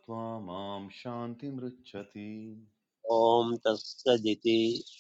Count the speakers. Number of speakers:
2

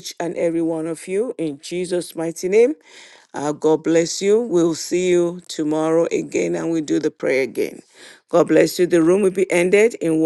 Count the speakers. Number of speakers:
1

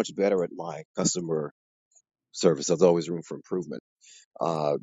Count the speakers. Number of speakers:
1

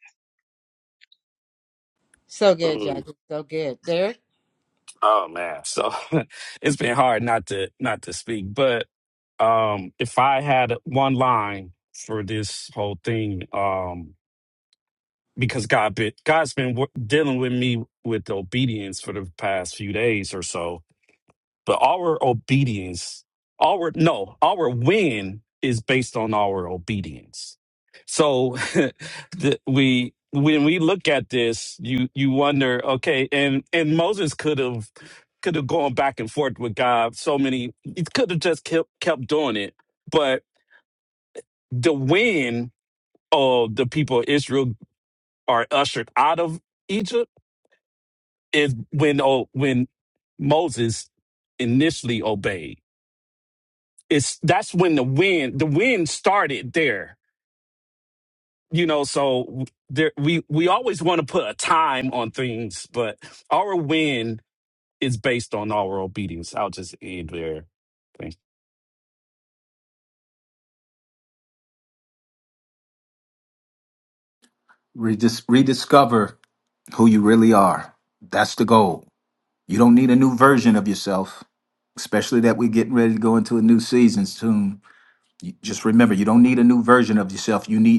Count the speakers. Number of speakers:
3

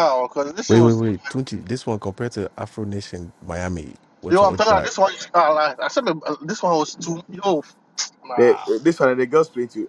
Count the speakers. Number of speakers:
3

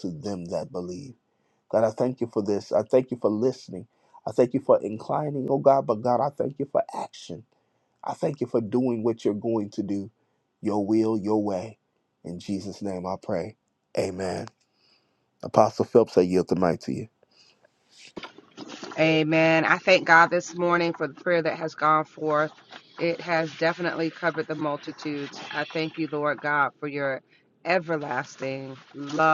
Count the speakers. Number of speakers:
2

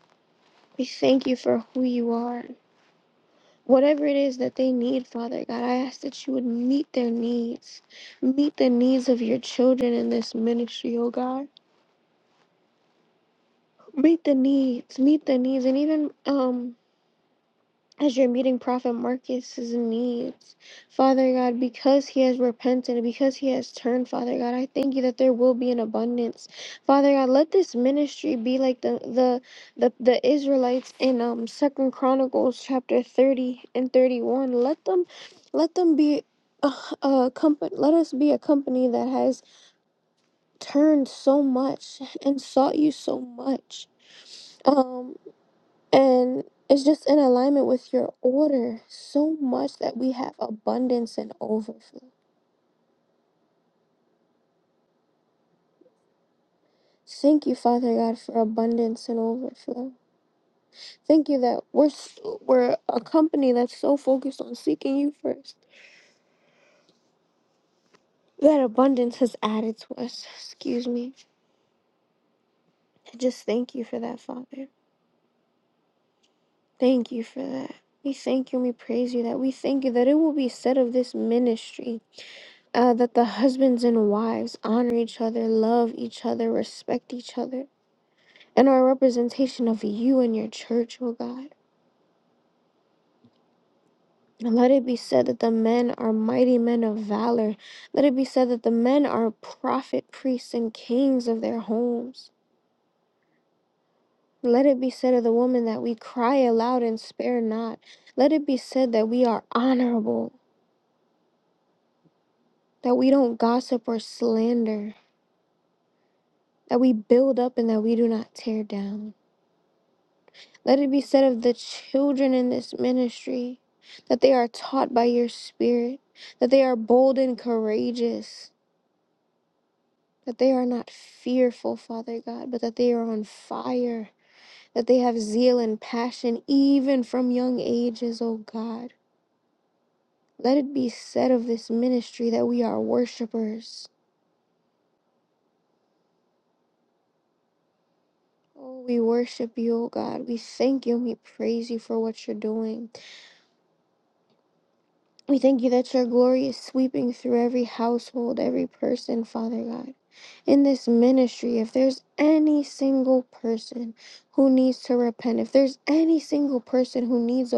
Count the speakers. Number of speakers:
1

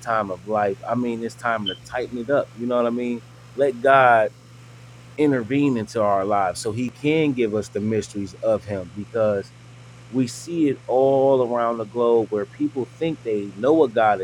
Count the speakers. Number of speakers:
1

